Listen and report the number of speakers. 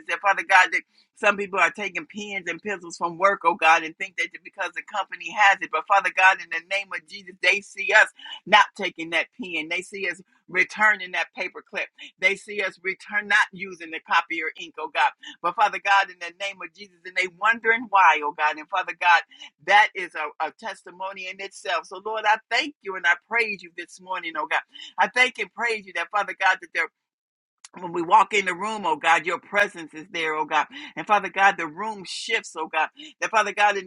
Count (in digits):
1